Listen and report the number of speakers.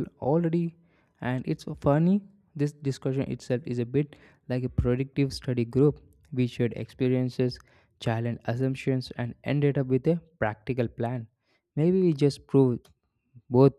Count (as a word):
one